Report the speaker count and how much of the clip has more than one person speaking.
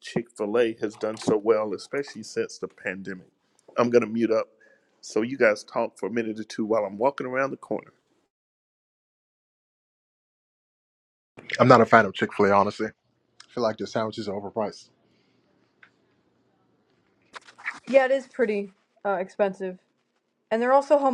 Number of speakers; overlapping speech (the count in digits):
3, no overlap